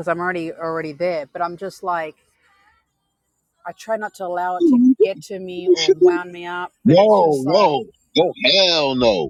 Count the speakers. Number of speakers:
2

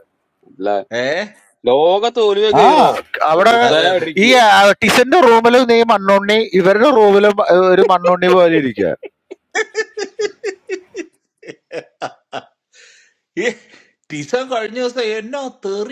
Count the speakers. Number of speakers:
3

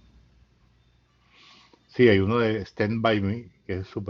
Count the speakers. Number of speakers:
1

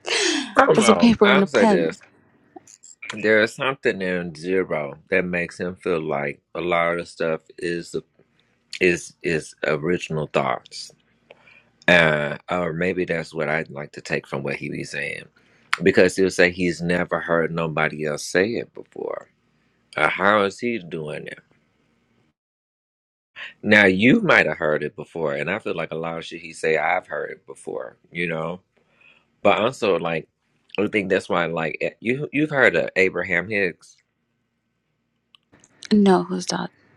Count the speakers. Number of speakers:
2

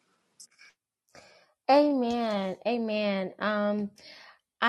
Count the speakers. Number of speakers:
1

